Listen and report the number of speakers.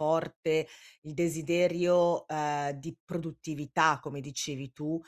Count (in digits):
1